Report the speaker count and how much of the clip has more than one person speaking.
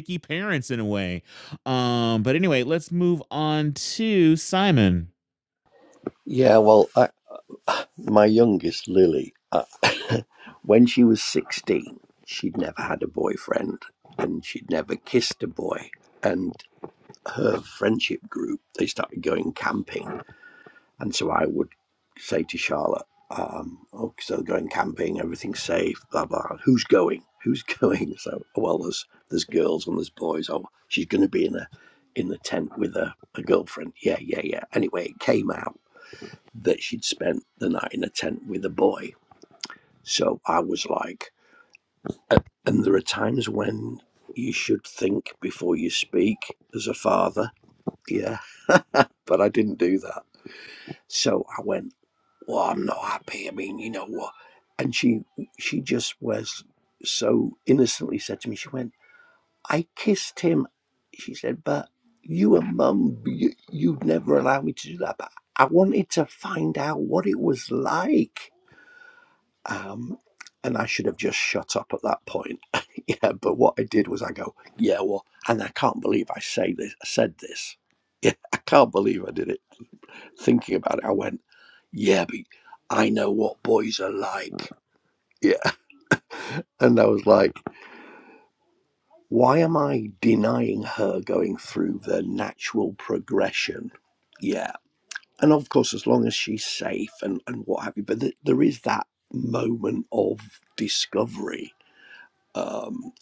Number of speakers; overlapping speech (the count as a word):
two, no overlap